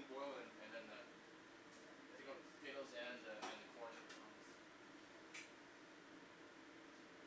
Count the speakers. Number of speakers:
one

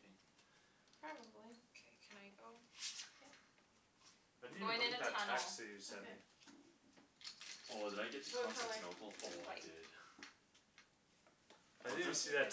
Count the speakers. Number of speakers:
four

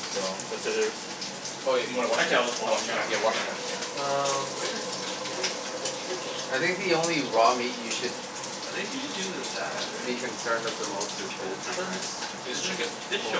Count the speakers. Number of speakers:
four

